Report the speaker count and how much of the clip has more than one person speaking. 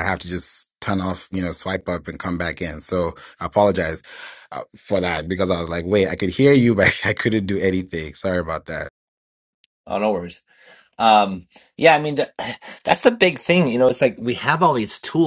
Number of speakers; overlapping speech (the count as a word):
two, no overlap